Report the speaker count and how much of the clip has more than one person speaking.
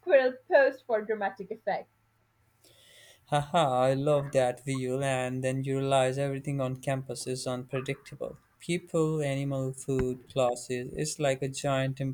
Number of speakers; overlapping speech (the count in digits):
2, no overlap